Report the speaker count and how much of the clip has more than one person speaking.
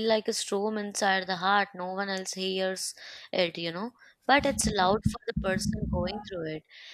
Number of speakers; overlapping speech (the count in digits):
1, no overlap